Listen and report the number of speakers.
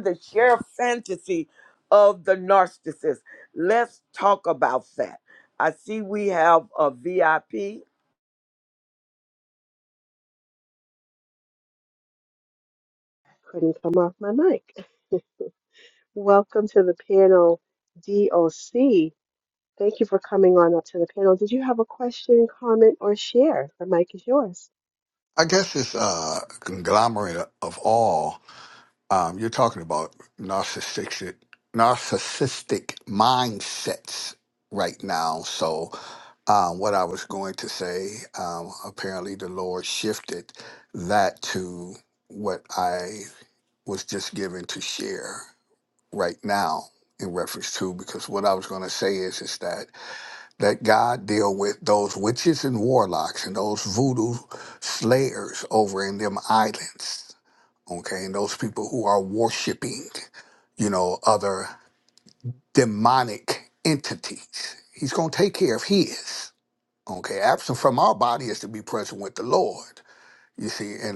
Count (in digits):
3